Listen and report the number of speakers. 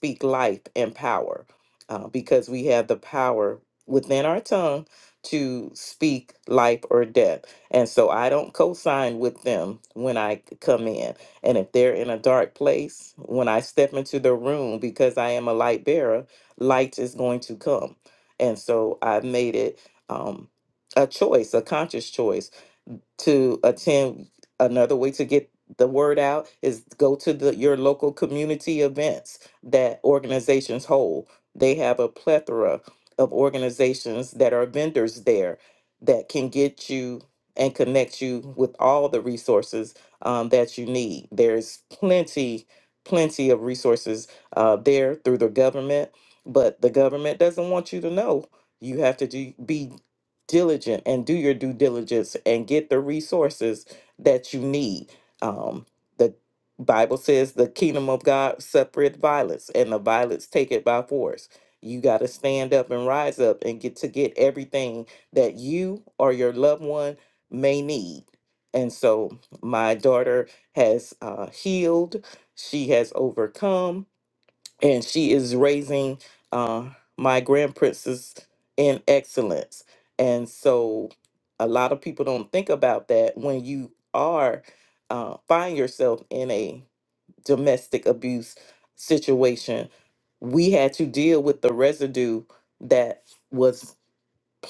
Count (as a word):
one